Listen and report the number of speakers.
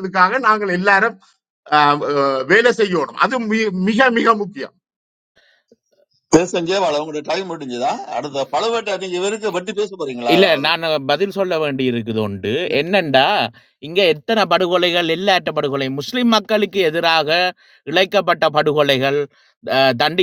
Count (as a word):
three